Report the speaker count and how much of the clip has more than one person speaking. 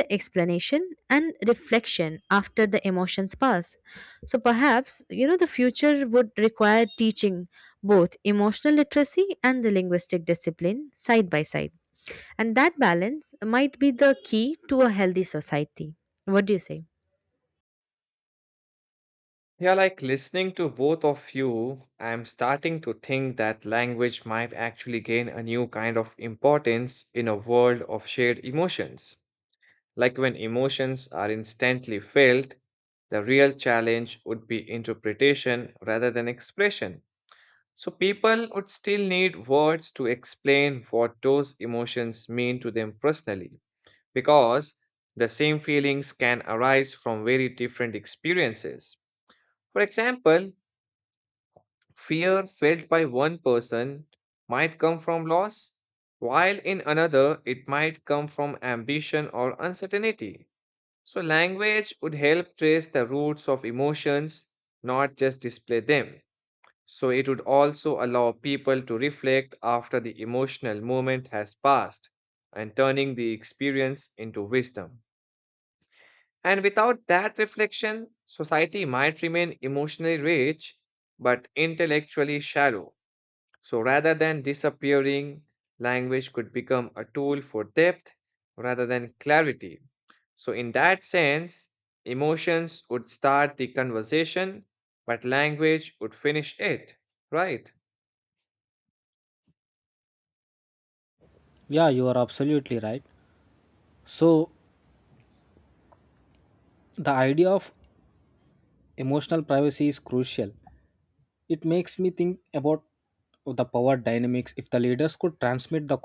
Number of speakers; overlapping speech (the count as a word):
three, no overlap